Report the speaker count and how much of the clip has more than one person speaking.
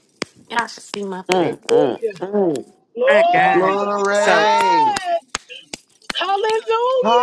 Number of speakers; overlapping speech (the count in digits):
3, about 35%